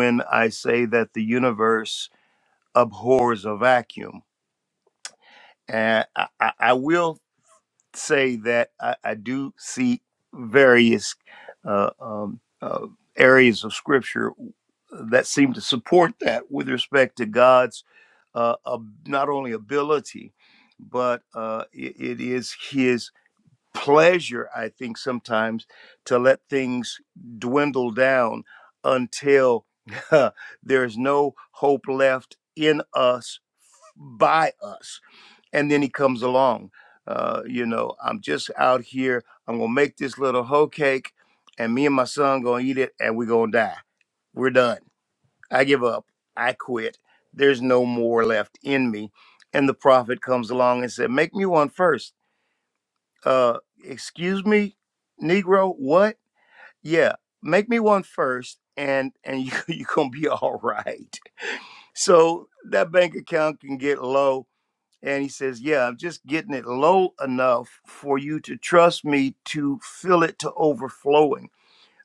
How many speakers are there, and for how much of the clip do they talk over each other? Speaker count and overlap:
one, no overlap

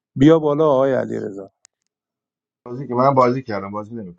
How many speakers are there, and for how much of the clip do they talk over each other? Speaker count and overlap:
two, no overlap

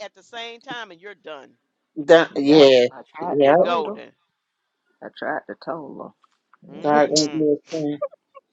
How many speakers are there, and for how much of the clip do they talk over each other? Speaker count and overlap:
three, about 24%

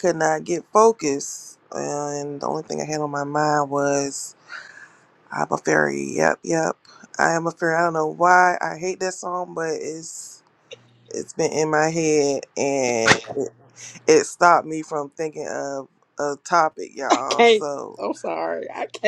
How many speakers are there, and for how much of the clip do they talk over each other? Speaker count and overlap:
two, about 3%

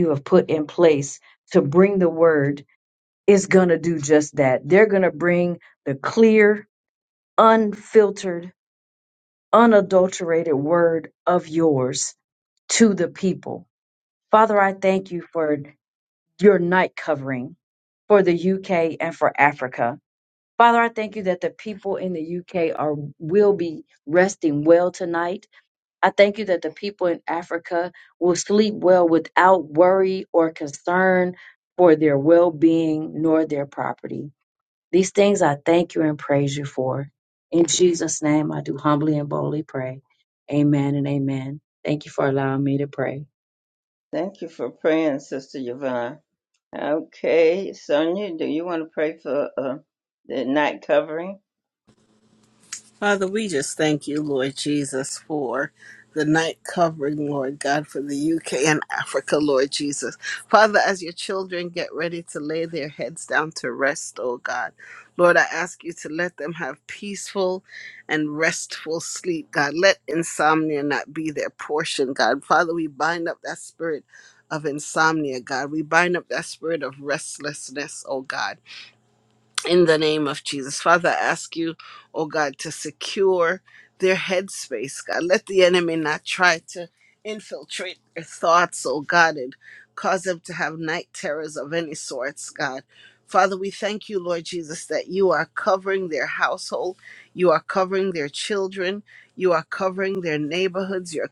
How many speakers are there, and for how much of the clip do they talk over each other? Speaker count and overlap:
three, no overlap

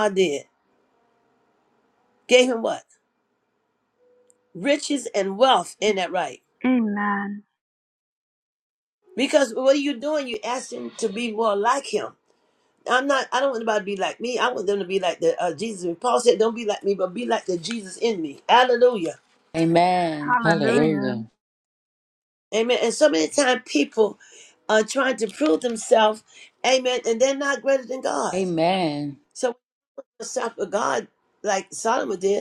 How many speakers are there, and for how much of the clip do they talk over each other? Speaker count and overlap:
three, about 3%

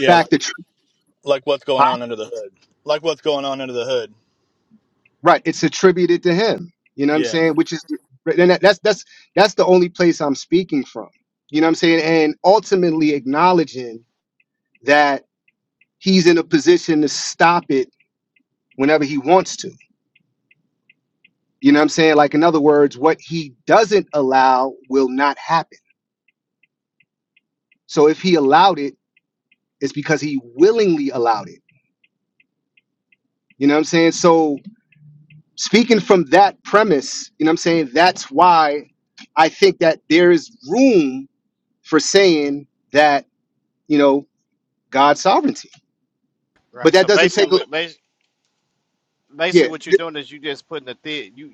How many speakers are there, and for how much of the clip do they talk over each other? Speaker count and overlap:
three, about 3%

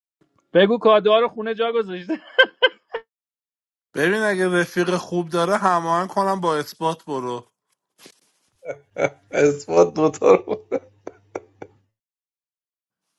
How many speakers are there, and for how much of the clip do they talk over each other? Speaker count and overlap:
three, no overlap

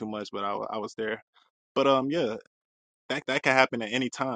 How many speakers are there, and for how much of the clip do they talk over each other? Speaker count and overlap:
one, no overlap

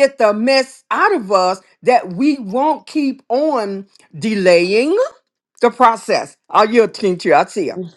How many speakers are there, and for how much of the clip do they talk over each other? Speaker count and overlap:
one, no overlap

